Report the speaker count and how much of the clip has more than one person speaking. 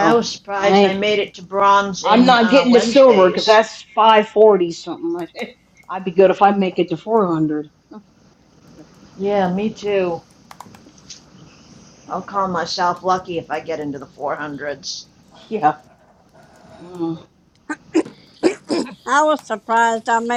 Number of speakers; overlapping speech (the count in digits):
3, about 10%